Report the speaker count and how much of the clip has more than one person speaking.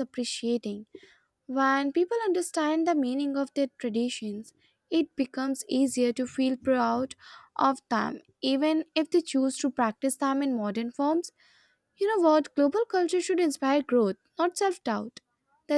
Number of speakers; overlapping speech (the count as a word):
one, no overlap